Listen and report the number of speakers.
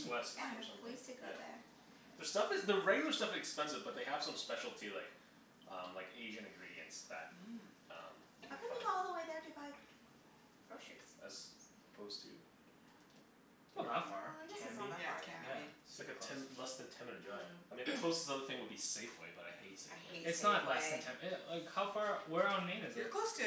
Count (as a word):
four